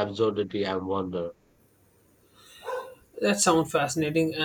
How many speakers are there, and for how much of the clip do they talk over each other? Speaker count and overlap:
2, no overlap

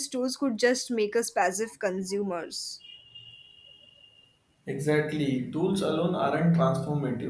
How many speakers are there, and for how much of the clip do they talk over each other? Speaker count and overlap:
2, no overlap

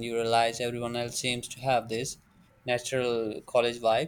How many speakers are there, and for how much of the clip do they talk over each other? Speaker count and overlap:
1, no overlap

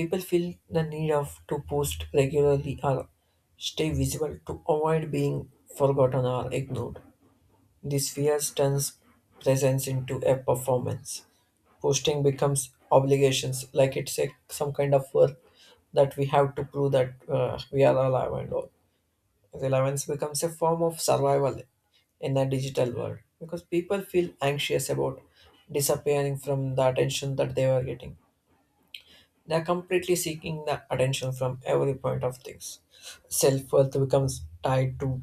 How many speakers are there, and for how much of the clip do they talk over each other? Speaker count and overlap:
1, no overlap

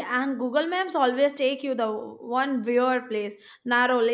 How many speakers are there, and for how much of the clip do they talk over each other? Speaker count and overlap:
1, no overlap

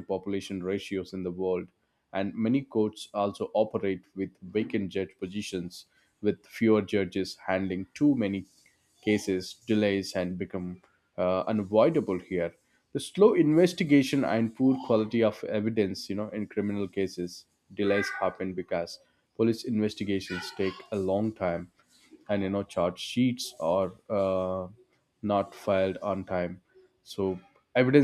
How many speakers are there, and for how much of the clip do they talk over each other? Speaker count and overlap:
1, no overlap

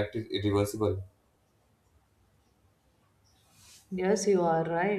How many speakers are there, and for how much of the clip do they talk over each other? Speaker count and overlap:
2, no overlap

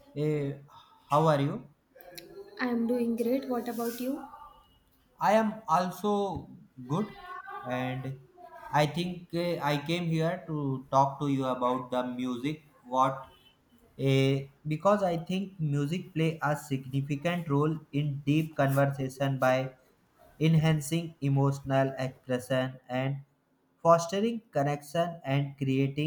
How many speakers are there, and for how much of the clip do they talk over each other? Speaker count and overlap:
2, no overlap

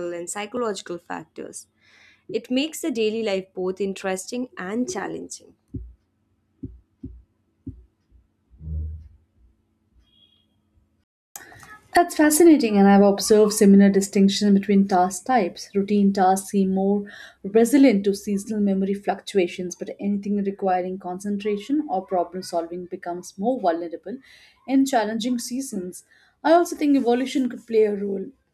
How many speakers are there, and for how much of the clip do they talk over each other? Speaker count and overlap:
2, no overlap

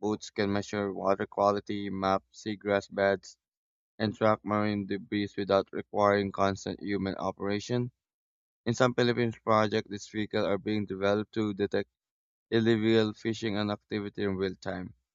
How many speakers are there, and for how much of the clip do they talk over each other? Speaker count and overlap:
1, no overlap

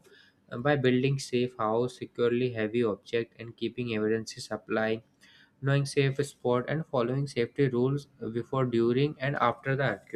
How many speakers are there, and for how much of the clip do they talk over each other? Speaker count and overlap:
1, no overlap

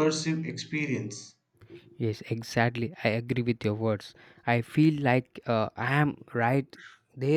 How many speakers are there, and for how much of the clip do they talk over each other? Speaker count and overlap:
2, no overlap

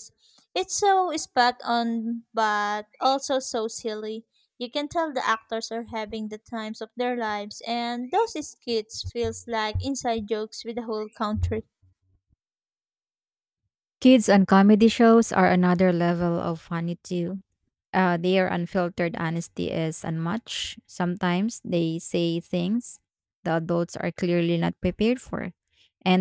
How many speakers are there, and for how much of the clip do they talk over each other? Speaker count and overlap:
2, no overlap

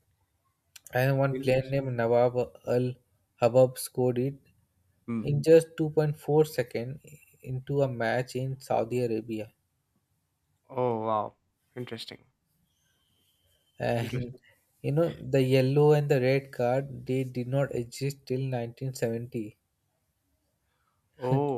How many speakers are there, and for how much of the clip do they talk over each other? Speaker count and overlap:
2, about 3%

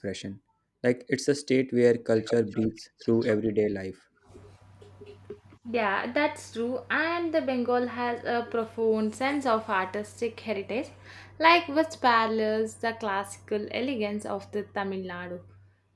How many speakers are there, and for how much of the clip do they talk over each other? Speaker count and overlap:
2, no overlap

